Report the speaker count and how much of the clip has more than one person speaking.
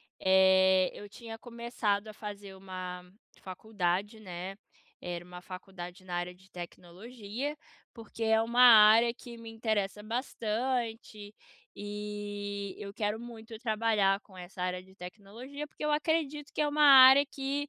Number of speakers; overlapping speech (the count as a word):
one, no overlap